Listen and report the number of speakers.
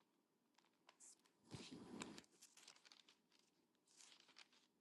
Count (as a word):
zero